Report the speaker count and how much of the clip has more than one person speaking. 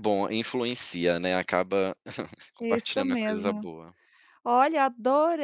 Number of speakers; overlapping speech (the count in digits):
2, about 20%